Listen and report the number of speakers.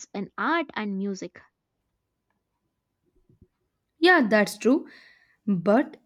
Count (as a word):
two